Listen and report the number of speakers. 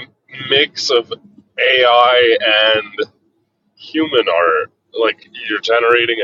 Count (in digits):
1